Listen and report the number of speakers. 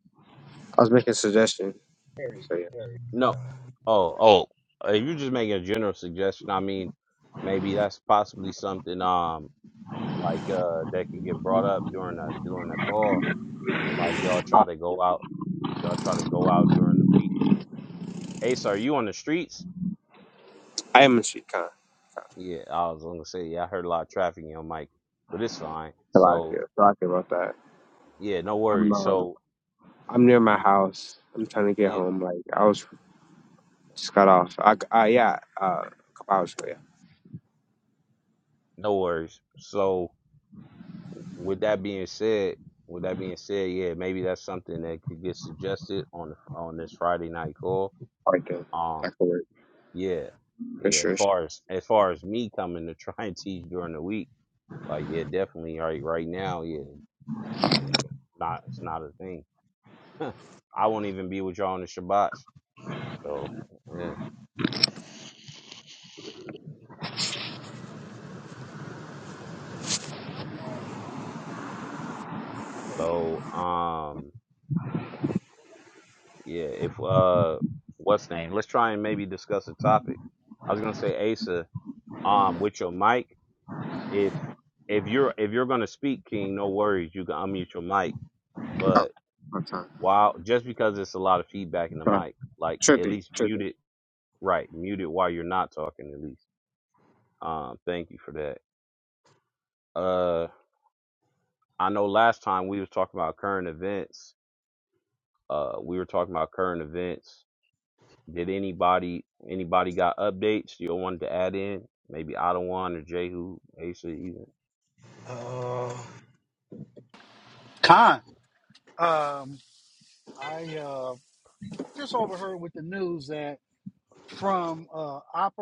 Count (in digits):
4